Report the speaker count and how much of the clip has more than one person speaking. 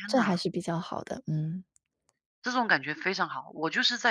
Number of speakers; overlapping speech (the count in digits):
2, about 8%